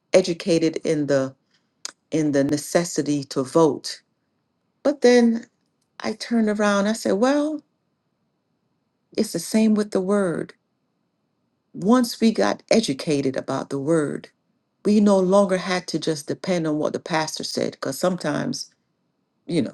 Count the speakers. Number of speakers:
1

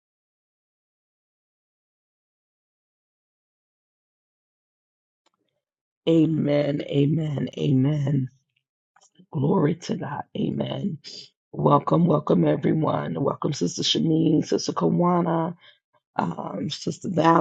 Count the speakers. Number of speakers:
1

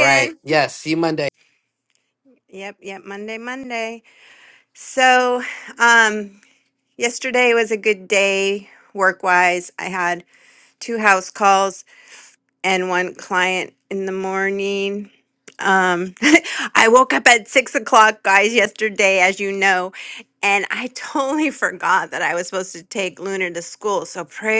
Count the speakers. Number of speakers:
2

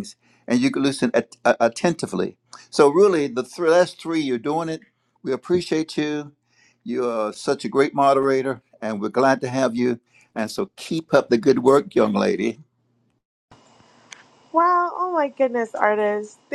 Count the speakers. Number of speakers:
2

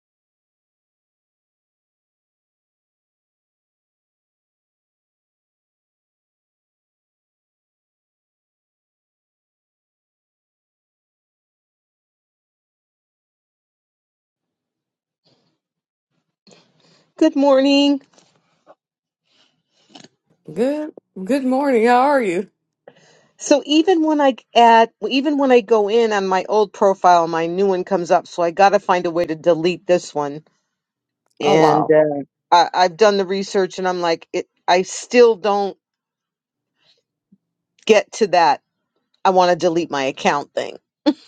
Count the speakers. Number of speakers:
2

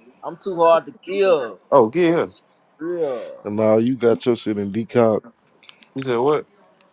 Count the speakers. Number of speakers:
3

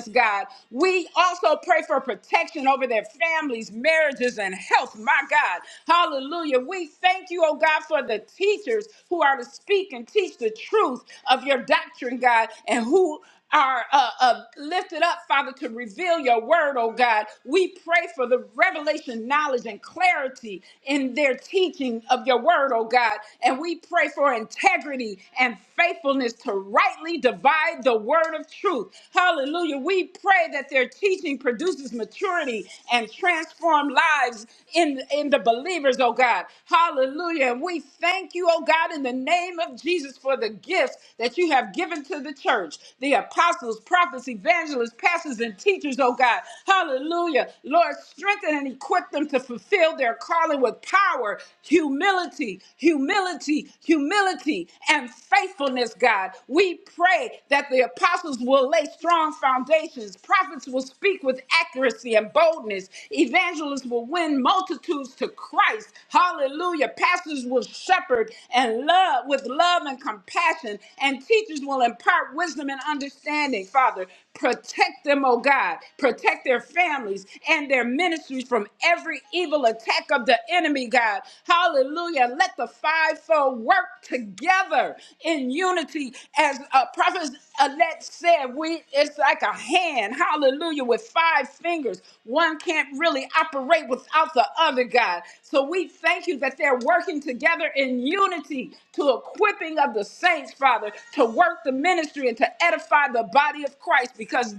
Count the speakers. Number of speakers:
1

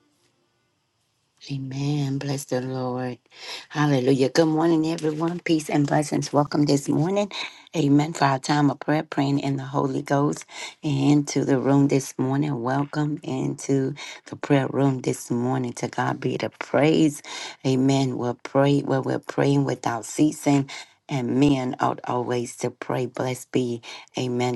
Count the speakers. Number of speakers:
1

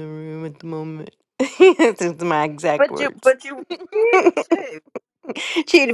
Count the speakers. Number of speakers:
2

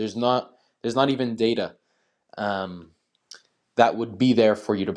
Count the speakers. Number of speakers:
1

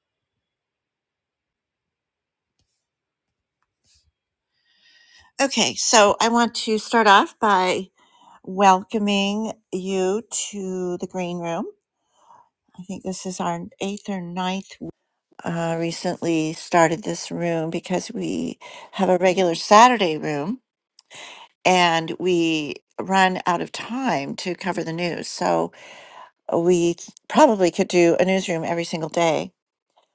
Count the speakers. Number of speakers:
1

